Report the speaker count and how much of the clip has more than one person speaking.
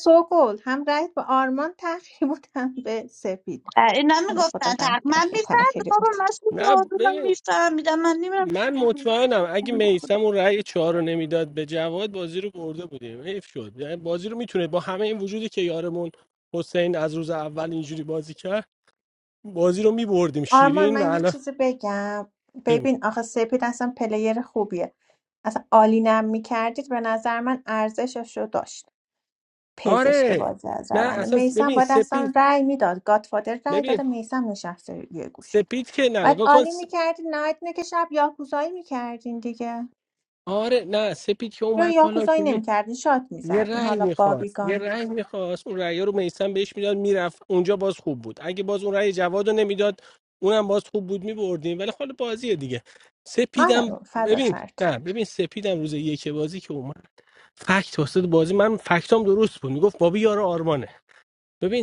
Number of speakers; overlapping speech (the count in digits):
3, about 16%